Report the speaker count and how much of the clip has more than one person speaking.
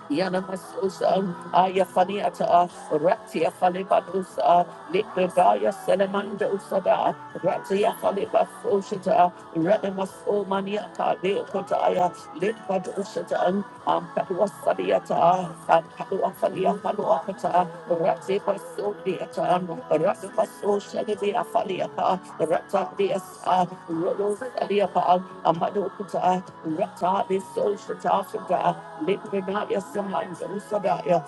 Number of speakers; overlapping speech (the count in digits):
1, no overlap